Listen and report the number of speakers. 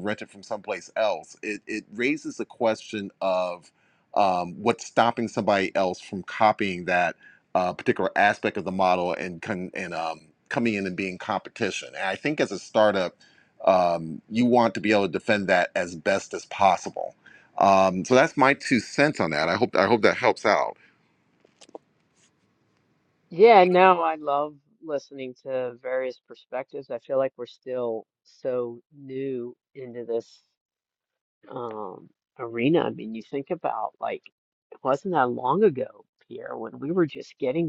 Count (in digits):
2